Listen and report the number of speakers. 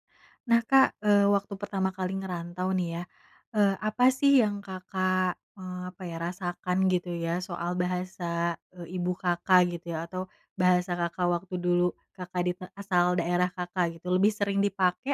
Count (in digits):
1